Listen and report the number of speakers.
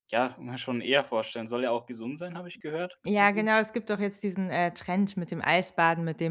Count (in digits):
2